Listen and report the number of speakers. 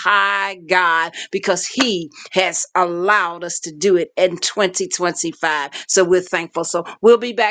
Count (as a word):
one